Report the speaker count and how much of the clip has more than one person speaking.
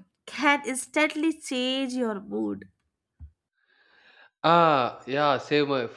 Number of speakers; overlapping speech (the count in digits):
2, no overlap